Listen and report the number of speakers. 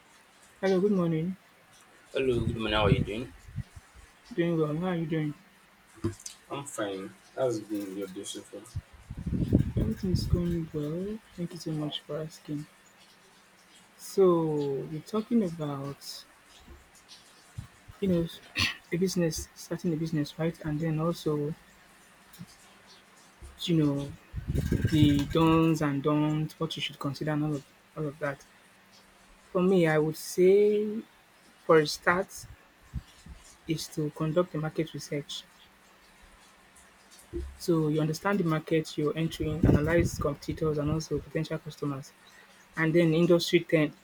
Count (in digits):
2